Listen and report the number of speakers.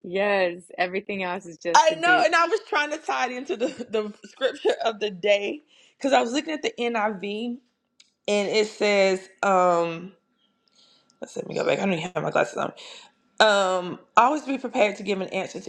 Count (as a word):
two